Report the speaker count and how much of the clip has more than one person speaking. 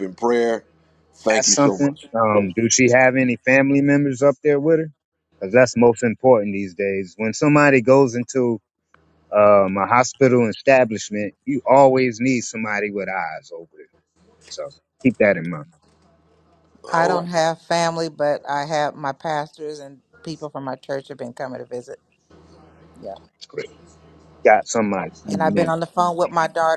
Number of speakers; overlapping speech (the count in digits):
3, about 6%